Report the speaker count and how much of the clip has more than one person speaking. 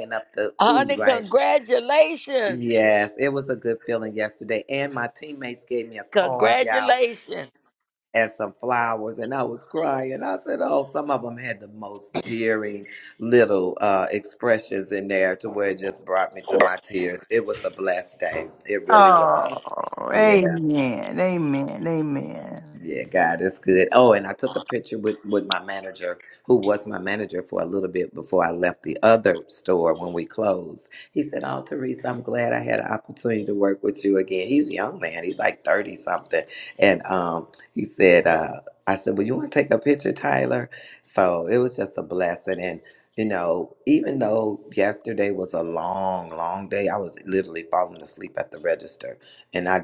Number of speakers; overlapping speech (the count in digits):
3, about 5%